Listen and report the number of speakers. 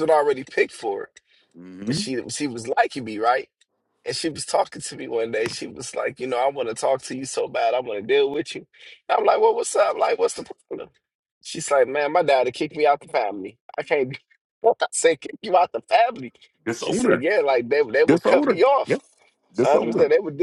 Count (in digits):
2